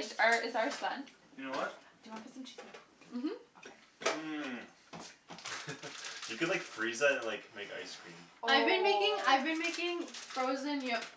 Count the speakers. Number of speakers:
four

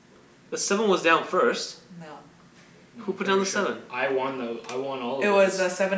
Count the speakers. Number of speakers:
three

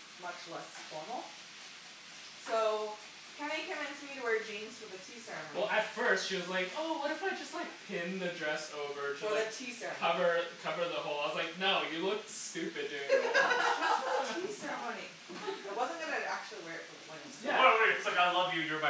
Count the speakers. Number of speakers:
three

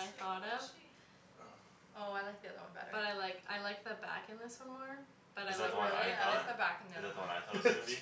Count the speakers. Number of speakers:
three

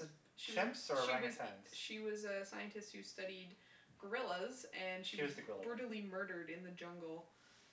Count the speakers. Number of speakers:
two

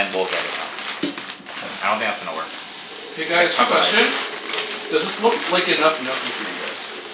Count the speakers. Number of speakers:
two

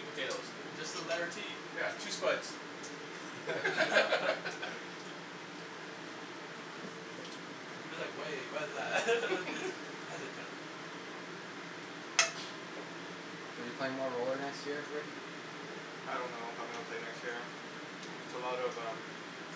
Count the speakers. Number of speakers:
four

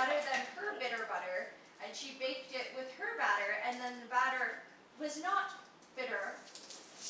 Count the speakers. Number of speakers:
one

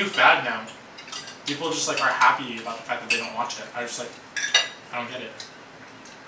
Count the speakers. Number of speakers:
one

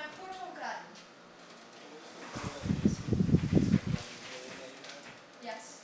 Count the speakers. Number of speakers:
two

